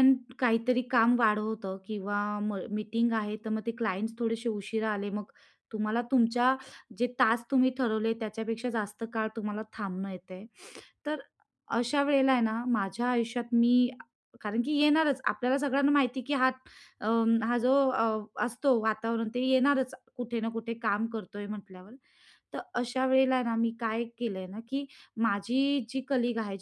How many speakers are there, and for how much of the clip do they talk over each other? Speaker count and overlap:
1, no overlap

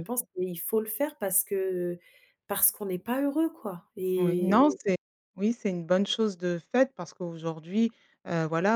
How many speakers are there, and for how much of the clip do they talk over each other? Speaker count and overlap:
2, about 6%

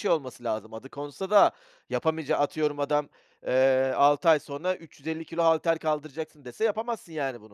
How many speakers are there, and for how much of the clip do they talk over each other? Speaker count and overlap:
1, no overlap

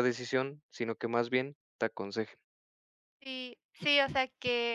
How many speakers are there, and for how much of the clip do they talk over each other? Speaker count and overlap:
2, no overlap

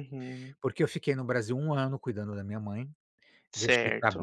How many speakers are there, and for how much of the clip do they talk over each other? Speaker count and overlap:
2, about 16%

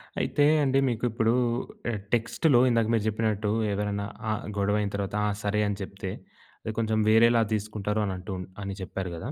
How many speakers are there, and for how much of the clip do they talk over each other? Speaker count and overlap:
1, no overlap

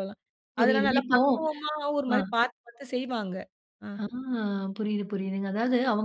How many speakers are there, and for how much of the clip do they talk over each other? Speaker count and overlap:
2, about 13%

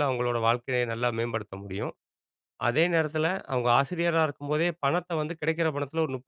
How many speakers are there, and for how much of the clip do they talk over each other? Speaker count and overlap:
1, no overlap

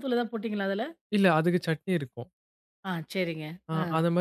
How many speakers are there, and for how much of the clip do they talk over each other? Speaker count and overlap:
2, about 5%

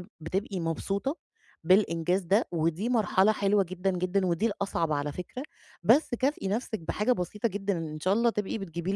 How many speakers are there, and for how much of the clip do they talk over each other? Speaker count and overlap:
1, no overlap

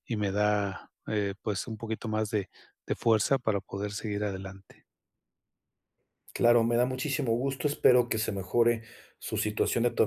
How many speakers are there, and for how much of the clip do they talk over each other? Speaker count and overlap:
2, no overlap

